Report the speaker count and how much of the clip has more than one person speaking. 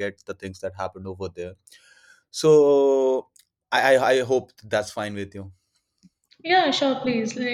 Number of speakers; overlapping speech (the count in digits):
2, no overlap